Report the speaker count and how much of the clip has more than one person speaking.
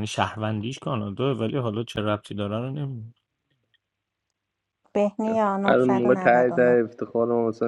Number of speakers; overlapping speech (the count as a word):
three, about 14%